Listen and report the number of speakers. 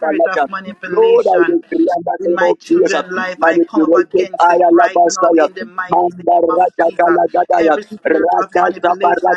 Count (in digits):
2